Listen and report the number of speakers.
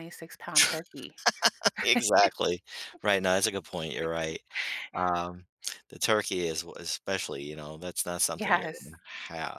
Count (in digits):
2